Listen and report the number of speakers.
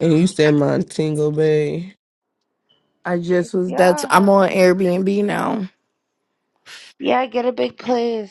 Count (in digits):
3